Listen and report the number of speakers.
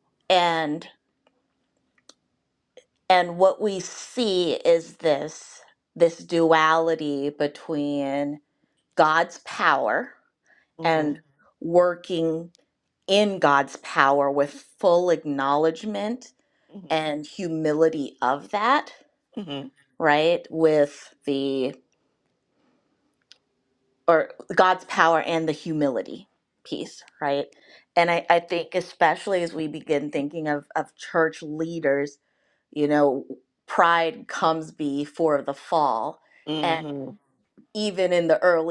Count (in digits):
2